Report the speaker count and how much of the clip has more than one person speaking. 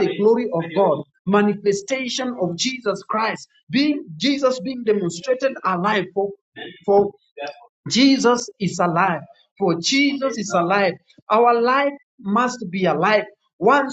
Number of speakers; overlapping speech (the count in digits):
1, no overlap